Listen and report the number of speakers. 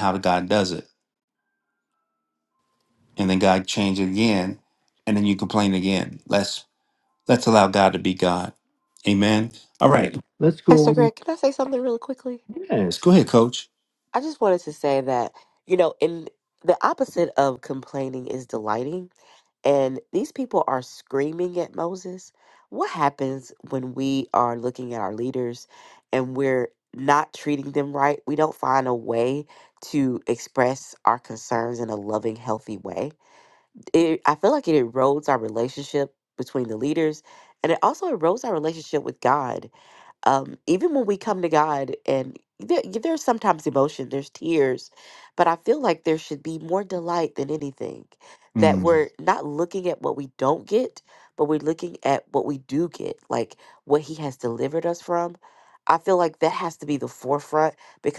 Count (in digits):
2